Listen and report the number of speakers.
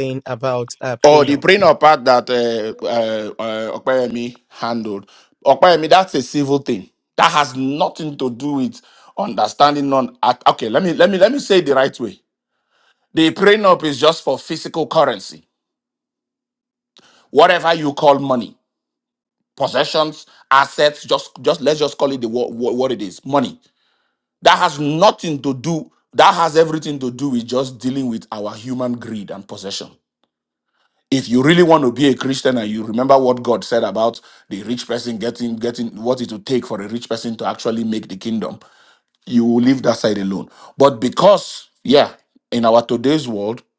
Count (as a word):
two